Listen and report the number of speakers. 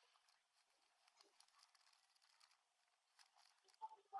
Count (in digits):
0